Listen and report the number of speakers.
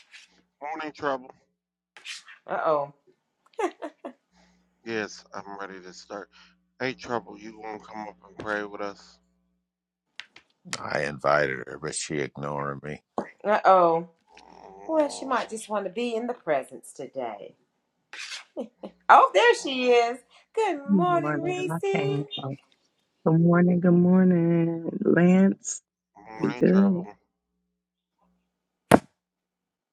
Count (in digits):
4